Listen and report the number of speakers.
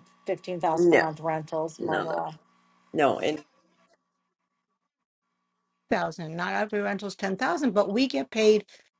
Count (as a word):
three